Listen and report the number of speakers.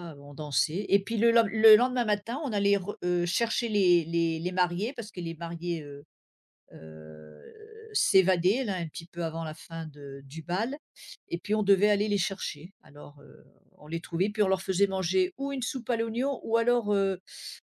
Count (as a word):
one